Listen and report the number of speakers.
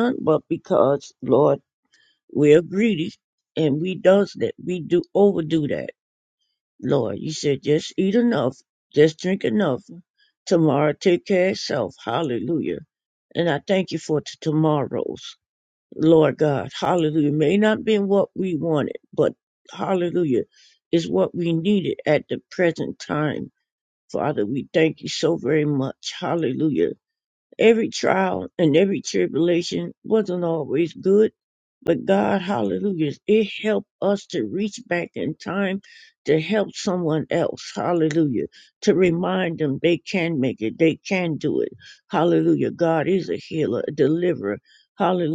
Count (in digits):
1